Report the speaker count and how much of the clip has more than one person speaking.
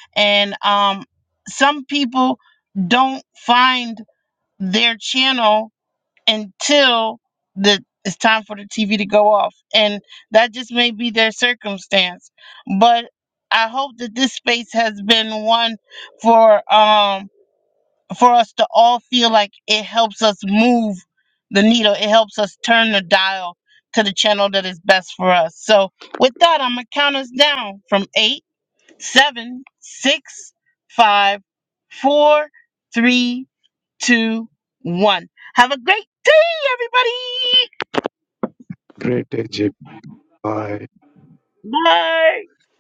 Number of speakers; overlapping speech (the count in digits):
2, no overlap